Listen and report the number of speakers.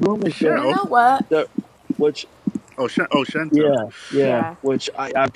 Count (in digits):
3